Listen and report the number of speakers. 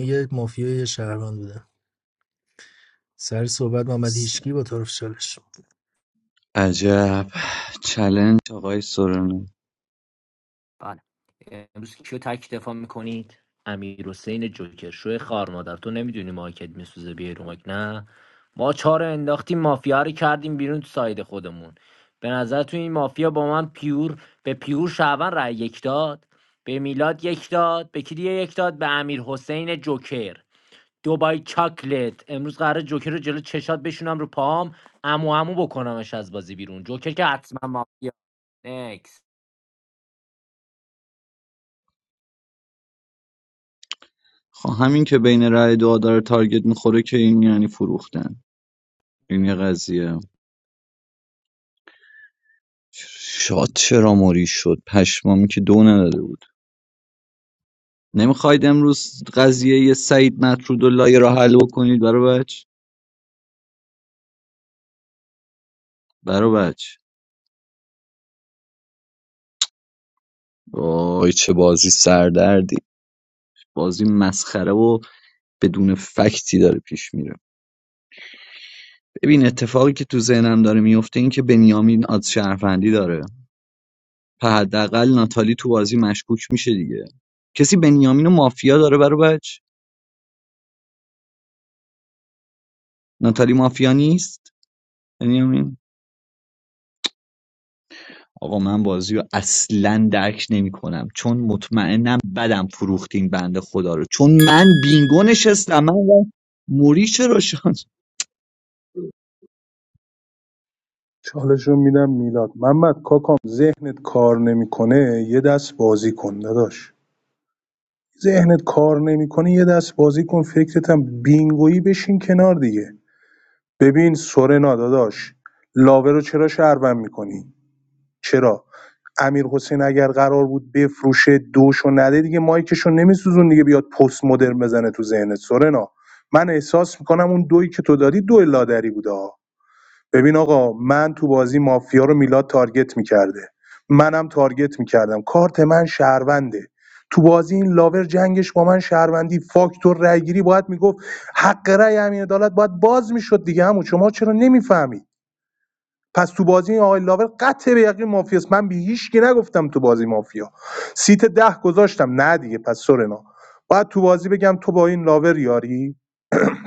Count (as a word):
four